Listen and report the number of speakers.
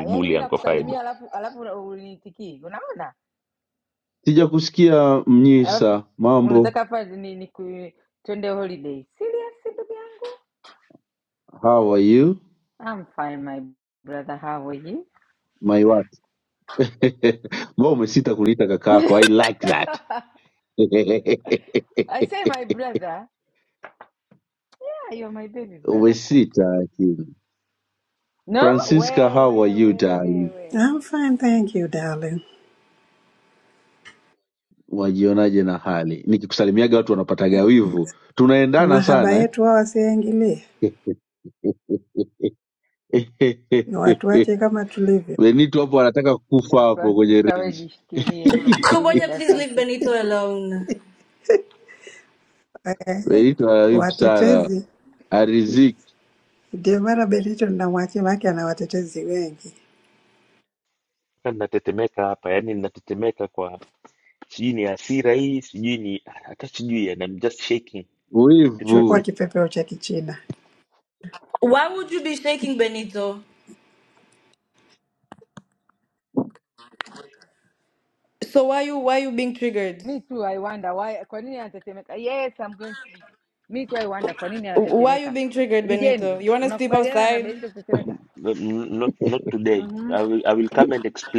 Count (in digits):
5